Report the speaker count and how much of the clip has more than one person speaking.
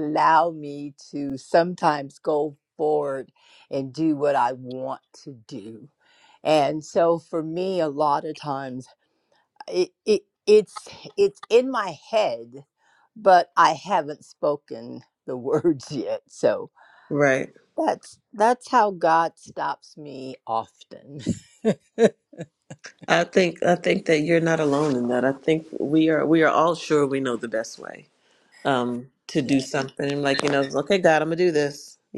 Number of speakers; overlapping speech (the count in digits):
2, about 1%